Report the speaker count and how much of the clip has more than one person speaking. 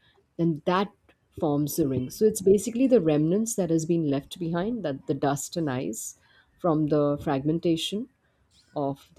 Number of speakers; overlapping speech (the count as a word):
one, no overlap